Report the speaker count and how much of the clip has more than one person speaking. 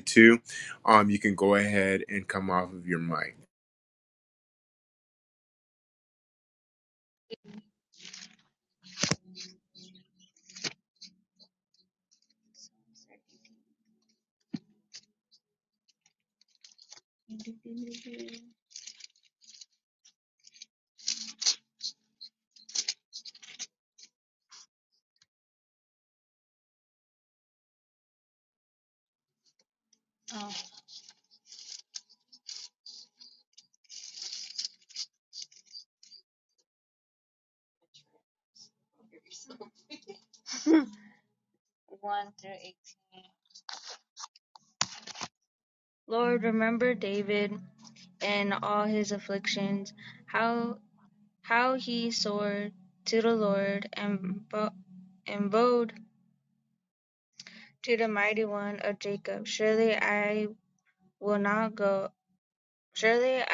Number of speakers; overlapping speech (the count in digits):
2, no overlap